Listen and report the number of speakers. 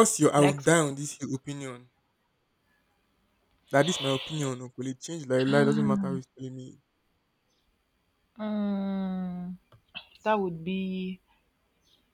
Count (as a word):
two